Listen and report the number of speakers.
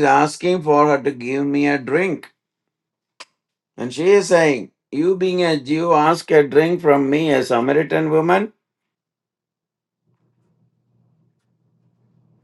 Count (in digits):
1